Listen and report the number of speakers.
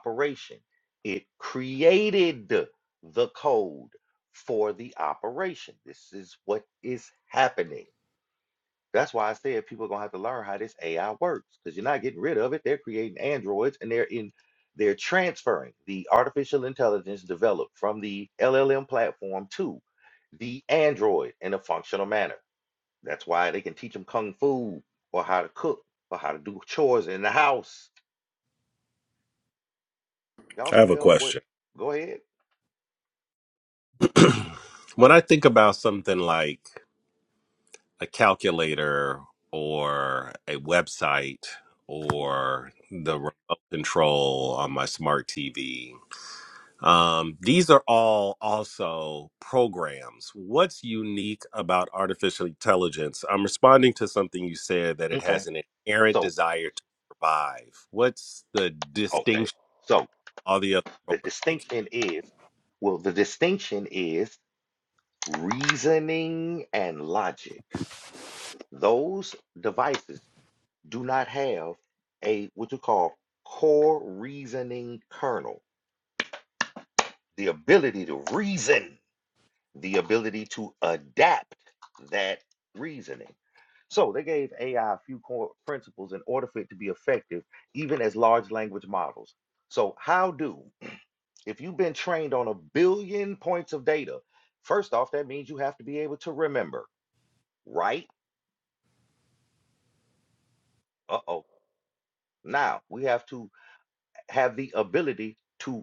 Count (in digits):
2